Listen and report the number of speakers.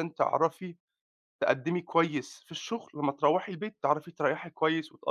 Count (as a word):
one